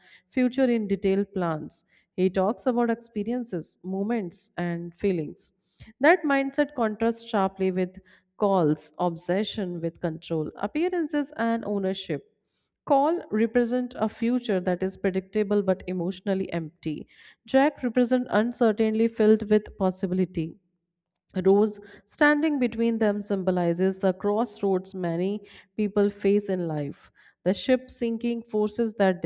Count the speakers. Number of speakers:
one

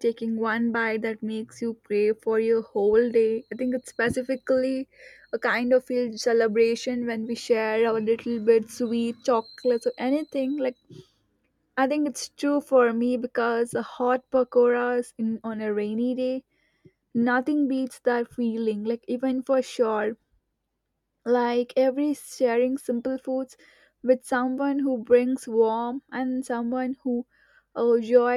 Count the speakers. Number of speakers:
one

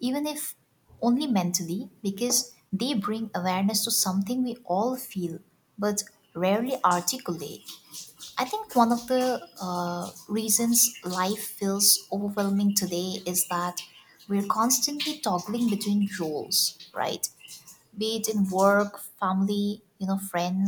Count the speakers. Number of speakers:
one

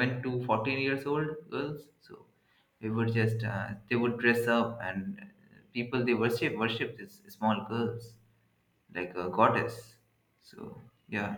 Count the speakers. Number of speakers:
one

